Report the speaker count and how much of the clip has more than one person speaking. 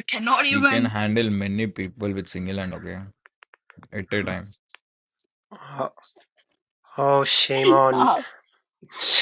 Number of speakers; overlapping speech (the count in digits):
3, about 7%